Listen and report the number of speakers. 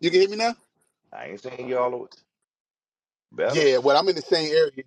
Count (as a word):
two